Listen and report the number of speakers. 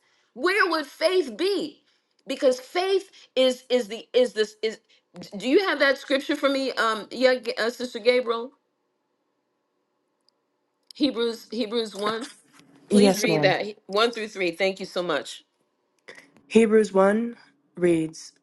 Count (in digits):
2